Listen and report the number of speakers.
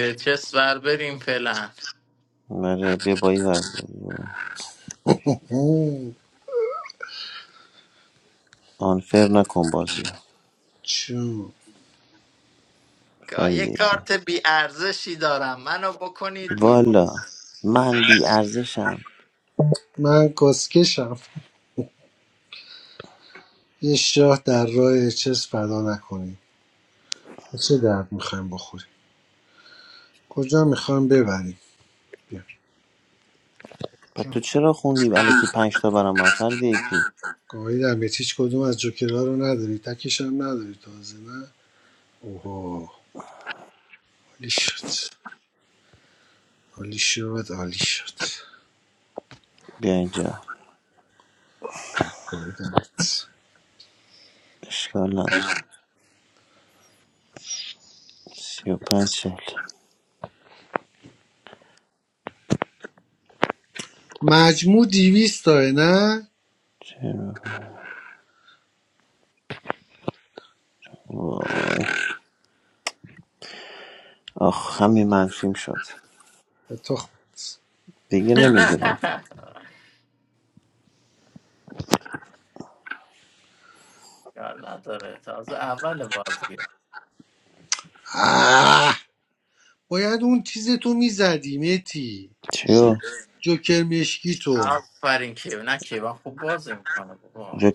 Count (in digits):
3